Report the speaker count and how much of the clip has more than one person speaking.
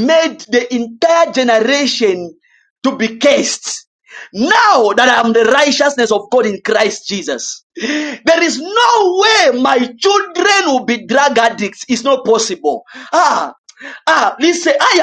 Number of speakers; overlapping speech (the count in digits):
1, no overlap